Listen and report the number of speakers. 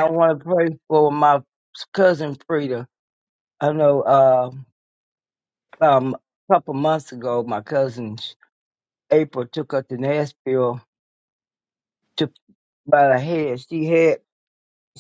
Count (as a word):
one